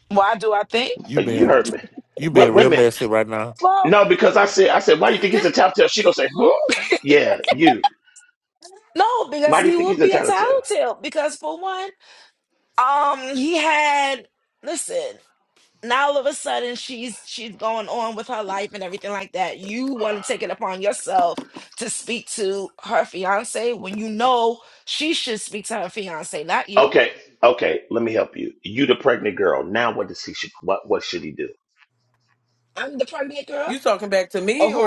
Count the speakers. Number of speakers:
4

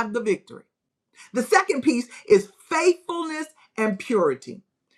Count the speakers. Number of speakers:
1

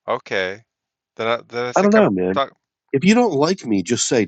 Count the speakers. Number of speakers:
2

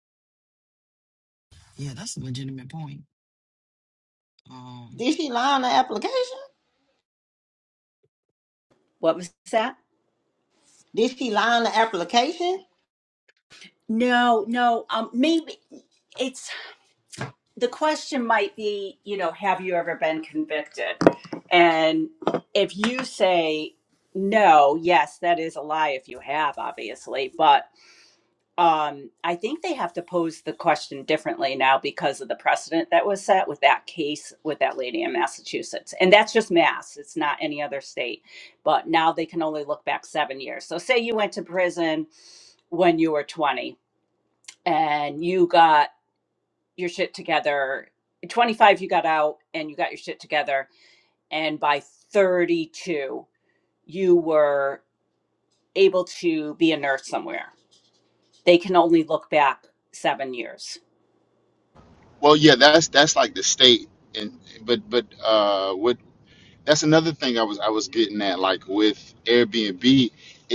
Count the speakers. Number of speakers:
4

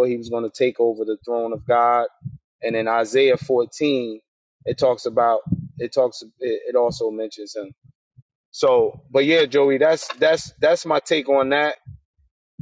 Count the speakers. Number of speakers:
1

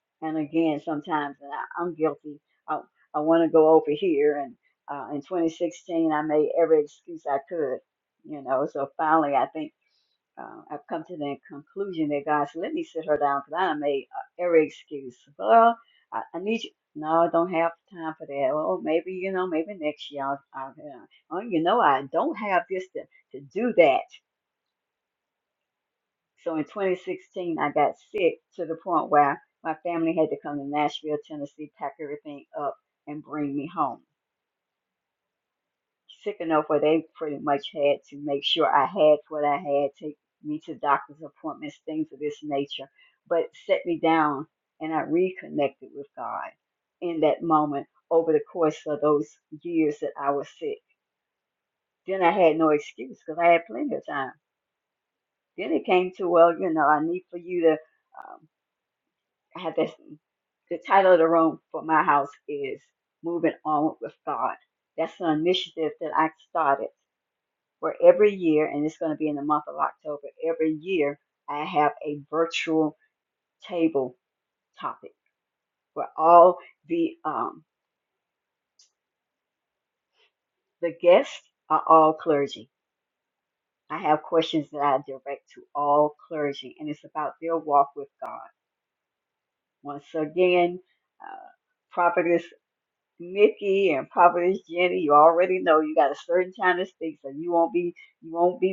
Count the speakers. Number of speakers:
1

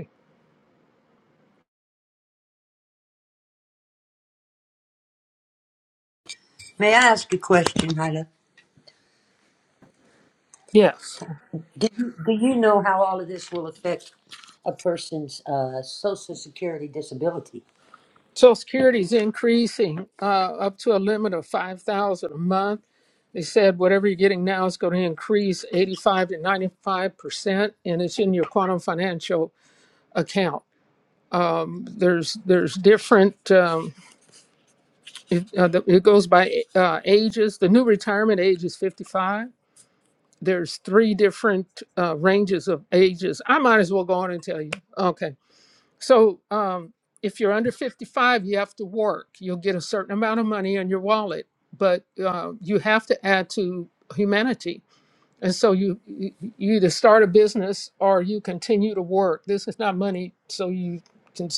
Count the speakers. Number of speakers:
2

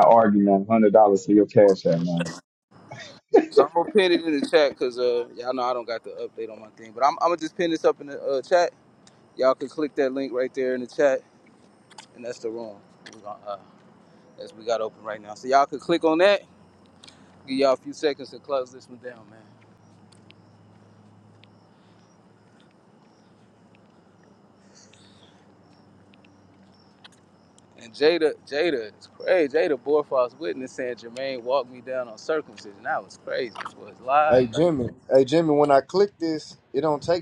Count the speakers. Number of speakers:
3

